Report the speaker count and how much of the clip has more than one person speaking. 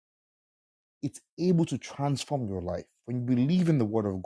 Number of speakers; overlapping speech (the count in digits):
1, no overlap